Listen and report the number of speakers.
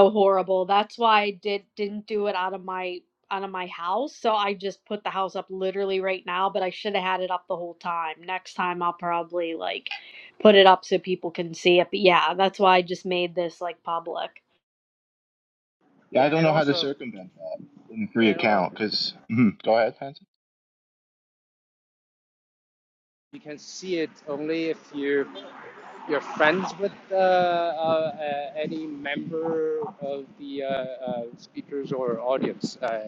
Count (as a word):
three